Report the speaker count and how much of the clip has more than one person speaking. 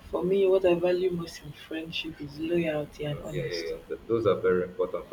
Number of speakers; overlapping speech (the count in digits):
2, about 10%